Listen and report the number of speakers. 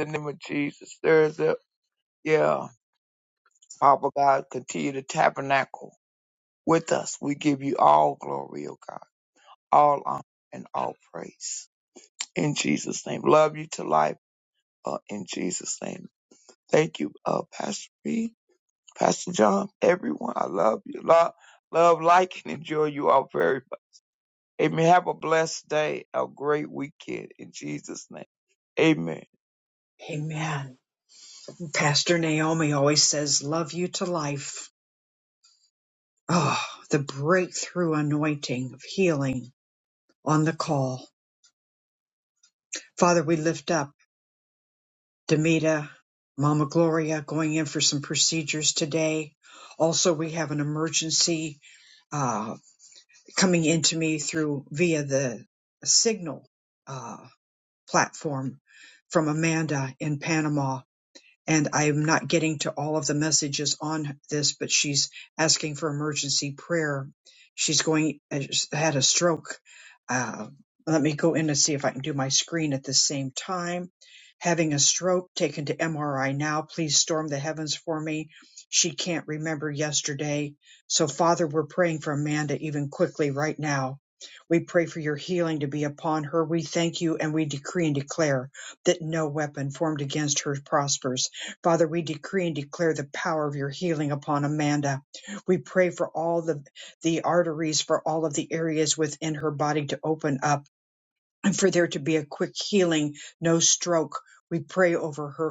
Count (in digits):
2